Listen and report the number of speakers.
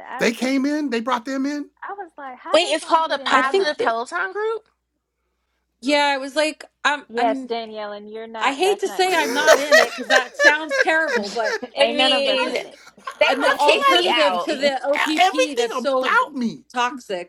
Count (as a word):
four